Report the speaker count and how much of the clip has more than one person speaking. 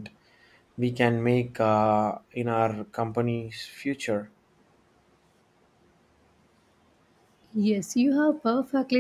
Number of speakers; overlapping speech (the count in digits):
2, no overlap